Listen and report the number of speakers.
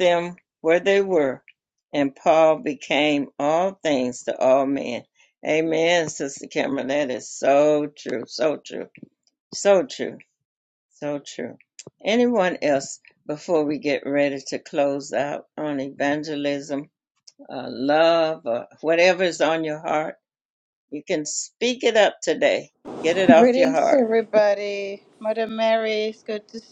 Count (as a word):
two